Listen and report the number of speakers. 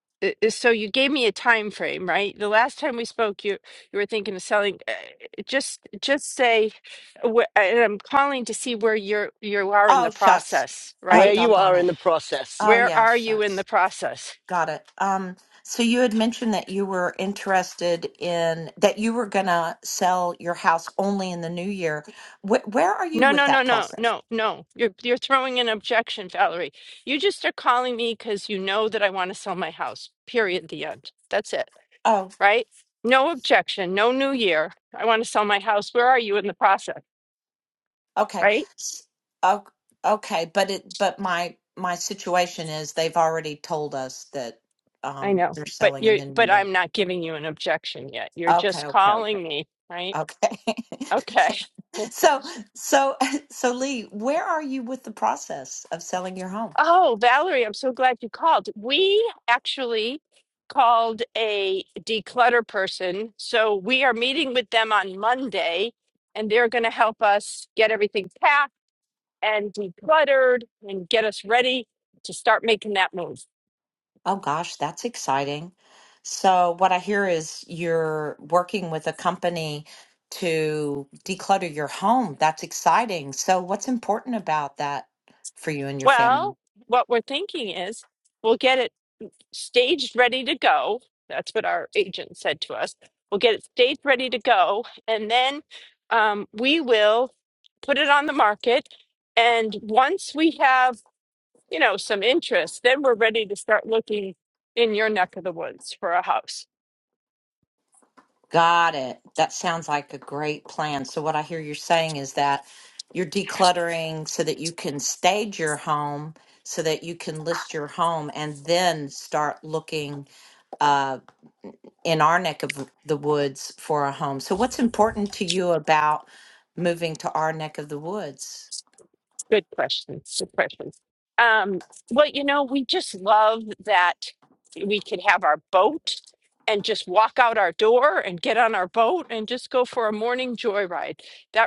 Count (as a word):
three